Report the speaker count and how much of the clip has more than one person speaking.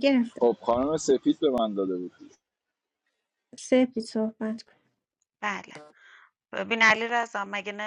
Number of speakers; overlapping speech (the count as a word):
three, about 1%